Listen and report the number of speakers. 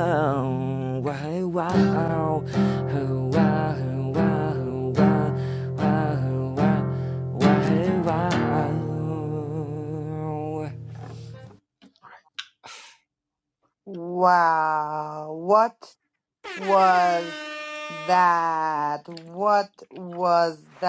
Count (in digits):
2